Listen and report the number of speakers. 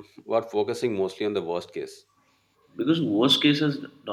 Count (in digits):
2